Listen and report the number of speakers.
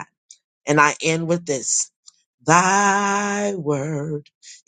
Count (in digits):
1